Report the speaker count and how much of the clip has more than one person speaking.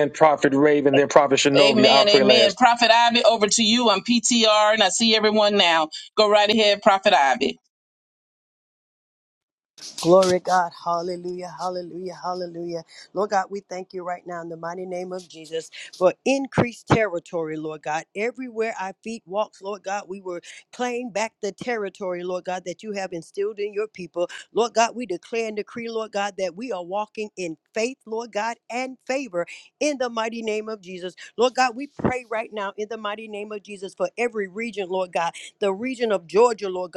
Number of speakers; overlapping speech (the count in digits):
3, about 3%